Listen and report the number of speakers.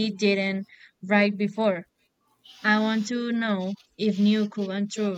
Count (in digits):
1